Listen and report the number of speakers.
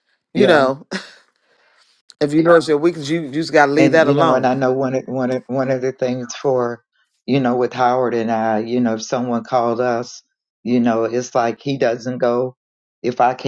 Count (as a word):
two